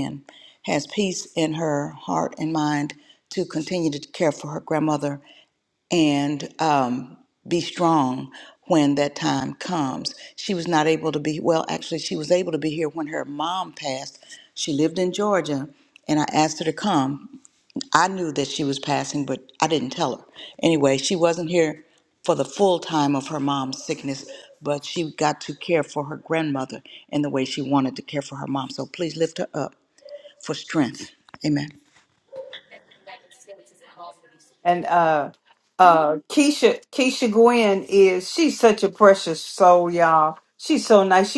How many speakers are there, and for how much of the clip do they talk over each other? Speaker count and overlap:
two, no overlap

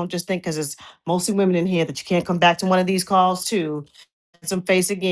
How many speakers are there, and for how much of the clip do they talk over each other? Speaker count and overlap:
one, no overlap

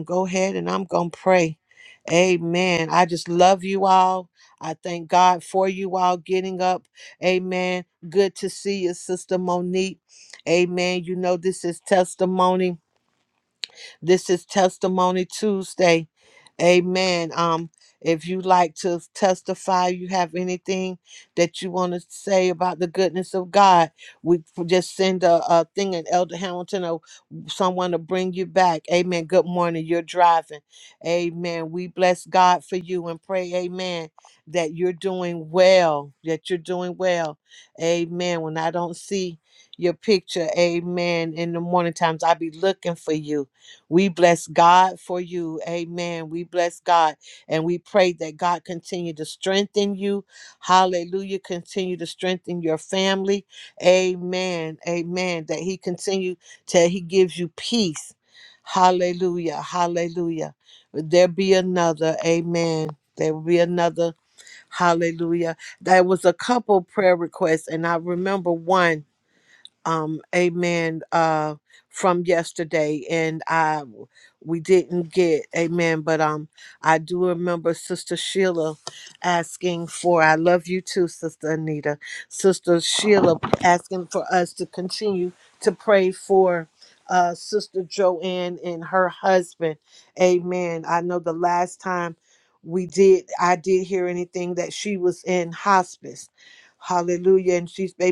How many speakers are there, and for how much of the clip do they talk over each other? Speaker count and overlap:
one, no overlap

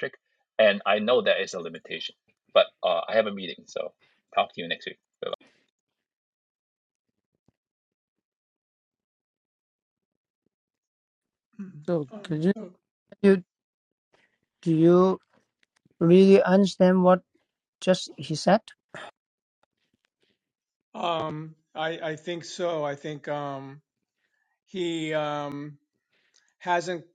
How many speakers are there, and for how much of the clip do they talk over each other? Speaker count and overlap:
three, about 2%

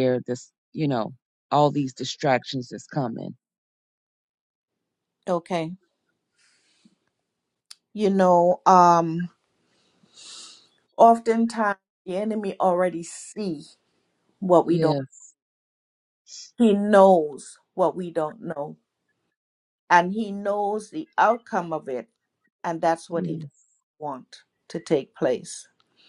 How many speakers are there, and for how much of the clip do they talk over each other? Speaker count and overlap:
two, about 2%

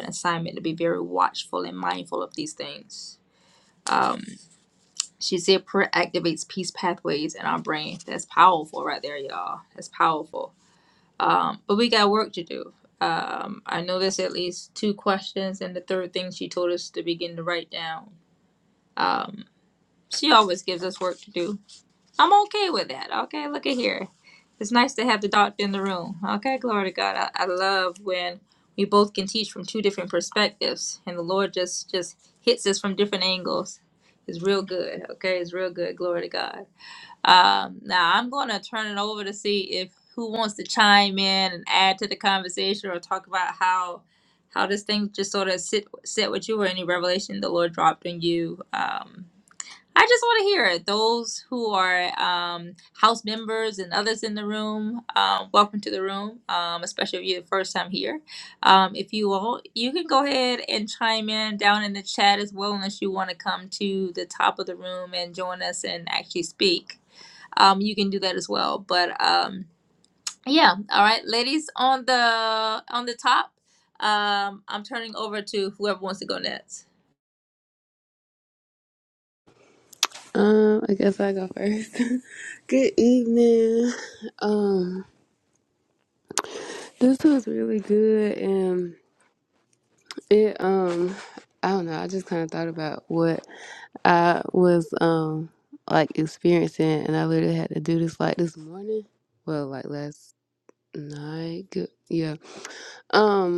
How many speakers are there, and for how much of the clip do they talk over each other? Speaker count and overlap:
two, no overlap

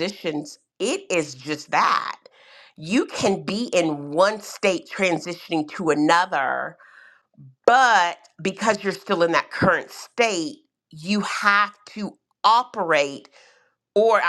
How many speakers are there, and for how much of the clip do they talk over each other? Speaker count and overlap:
one, no overlap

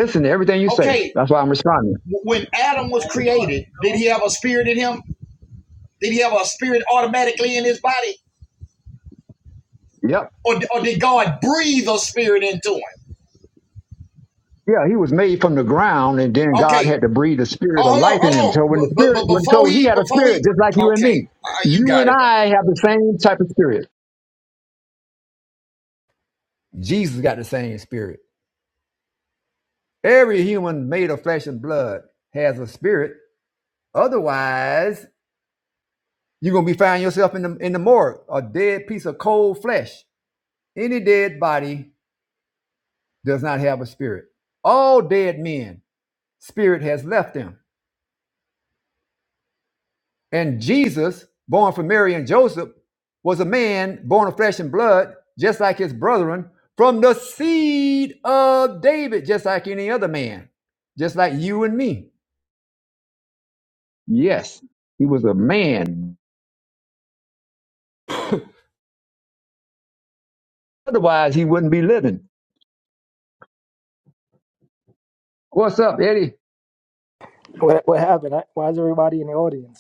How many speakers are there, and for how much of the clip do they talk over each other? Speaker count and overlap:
three, about 6%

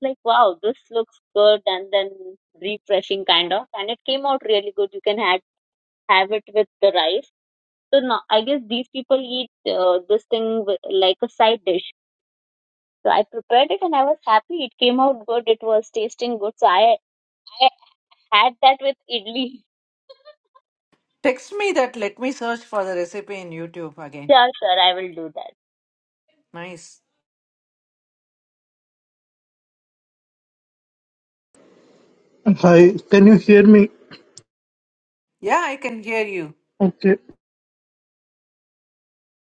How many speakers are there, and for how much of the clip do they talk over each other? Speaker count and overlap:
three, no overlap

